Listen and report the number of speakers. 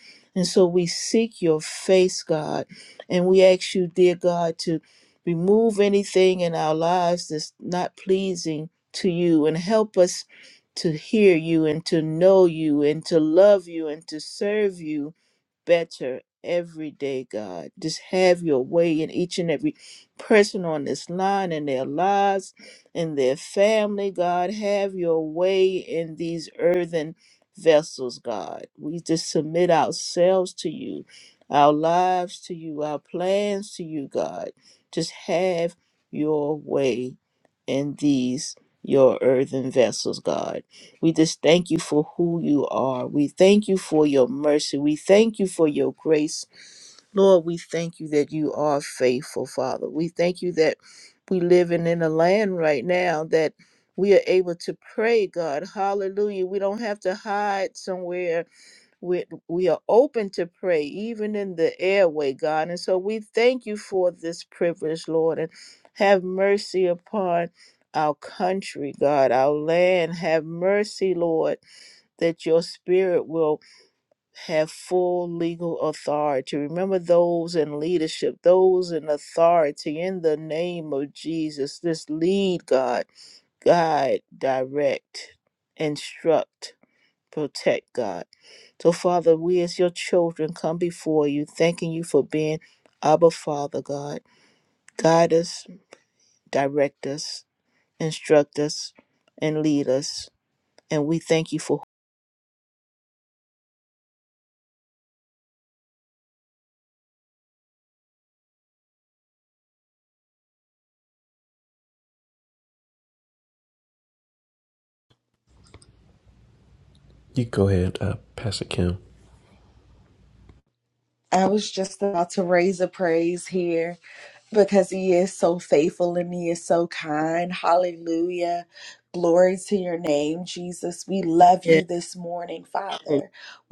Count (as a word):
three